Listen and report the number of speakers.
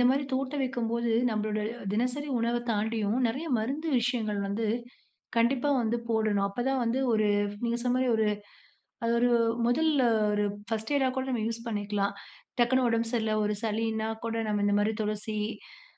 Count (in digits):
1